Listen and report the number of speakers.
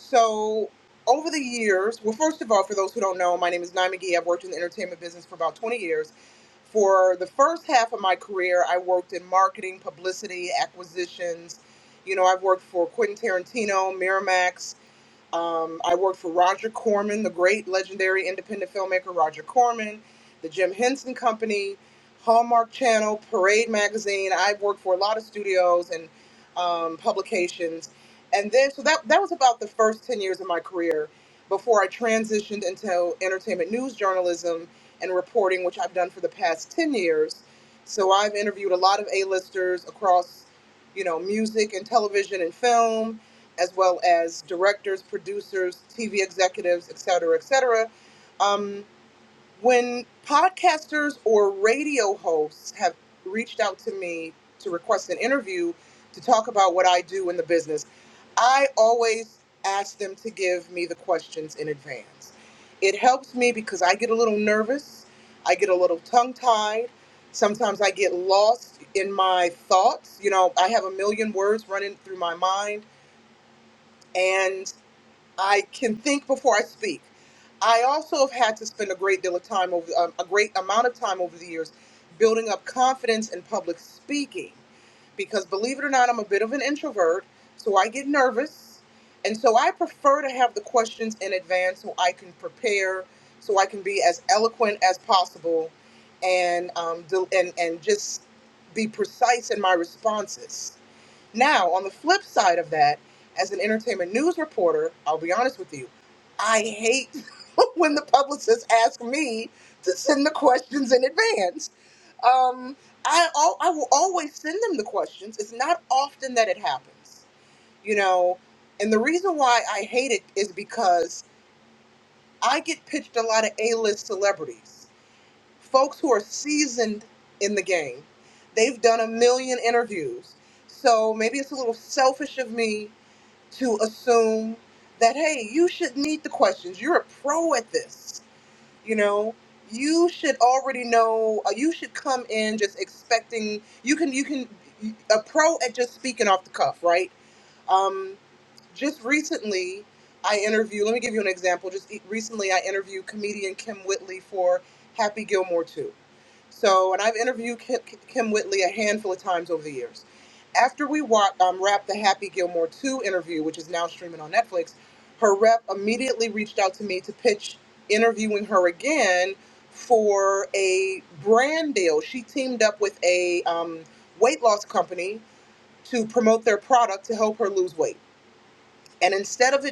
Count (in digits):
1